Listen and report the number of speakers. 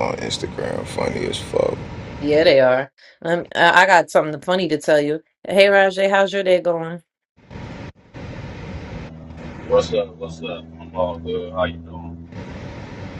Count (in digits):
3